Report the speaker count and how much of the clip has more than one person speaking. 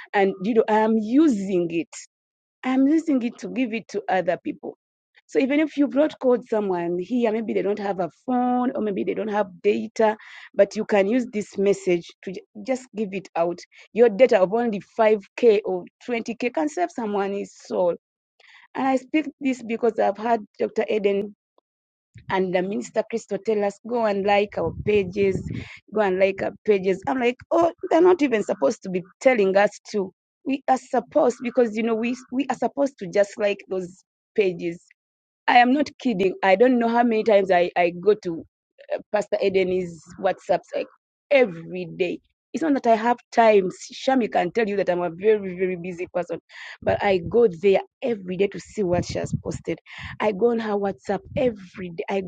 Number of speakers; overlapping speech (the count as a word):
one, no overlap